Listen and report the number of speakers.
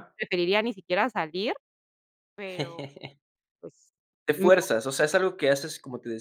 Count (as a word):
two